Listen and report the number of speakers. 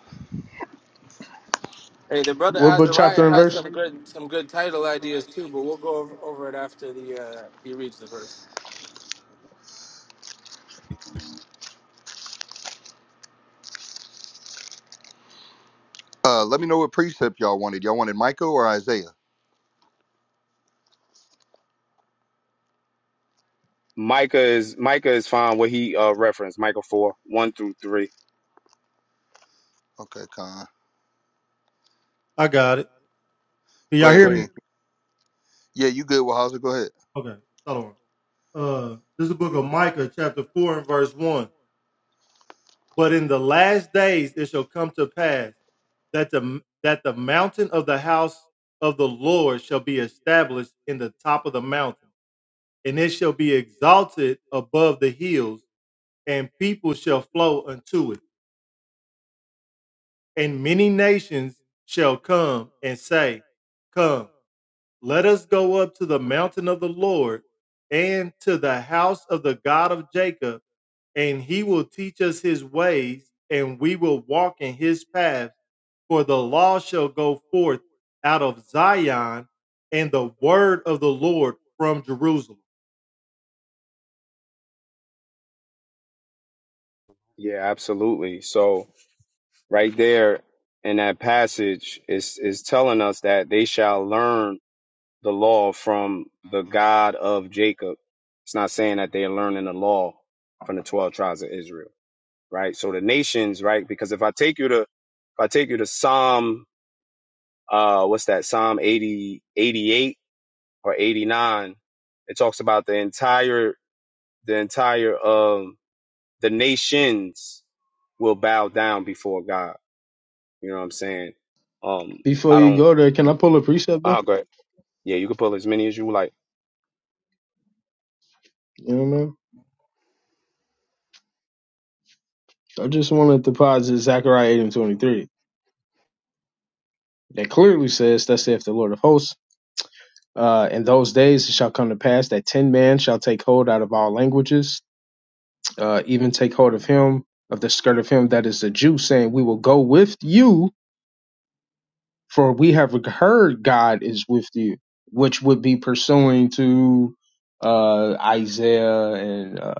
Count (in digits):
5